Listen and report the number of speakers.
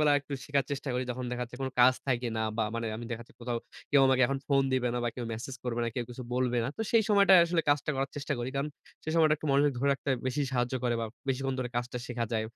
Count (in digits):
1